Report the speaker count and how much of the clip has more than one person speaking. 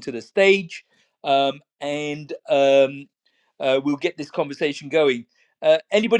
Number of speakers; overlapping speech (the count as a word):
one, no overlap